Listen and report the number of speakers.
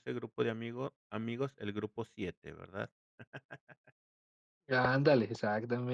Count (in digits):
2